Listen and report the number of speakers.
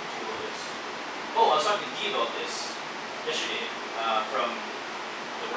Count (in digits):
1